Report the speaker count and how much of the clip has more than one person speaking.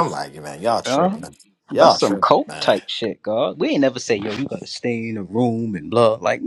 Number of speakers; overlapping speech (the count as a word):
two, about 22%